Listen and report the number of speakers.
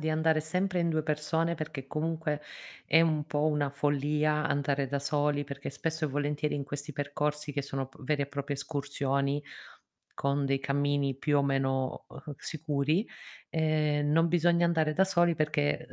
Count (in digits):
1